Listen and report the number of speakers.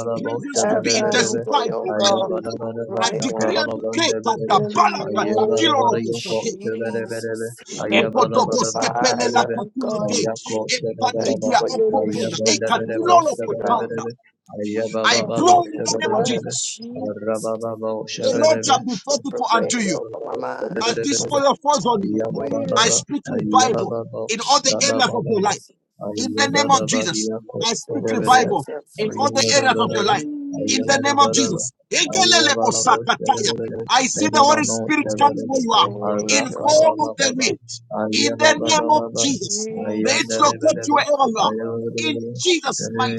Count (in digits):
3